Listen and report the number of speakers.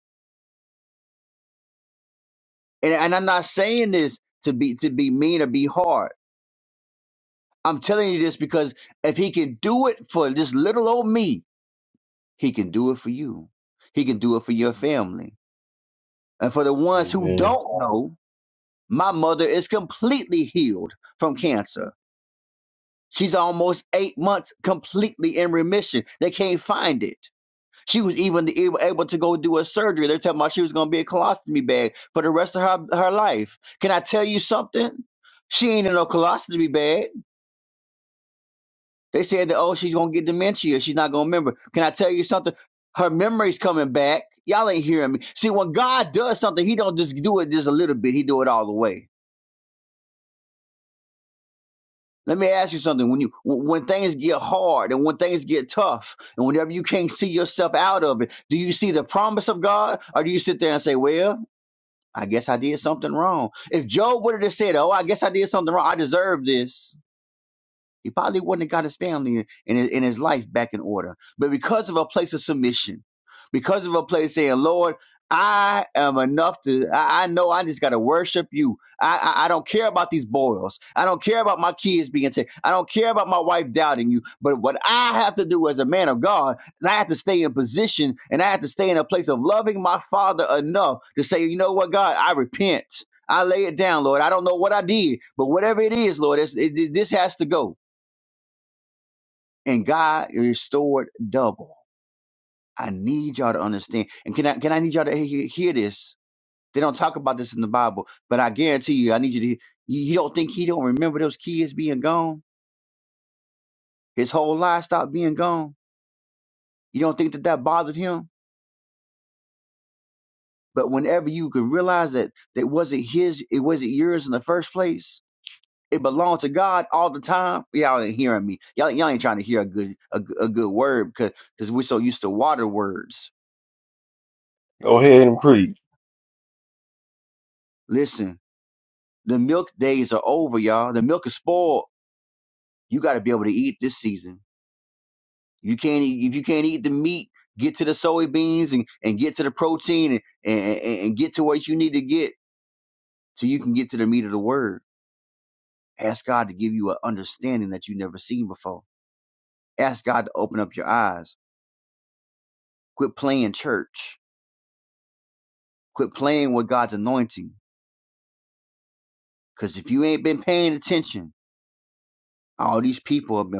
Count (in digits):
2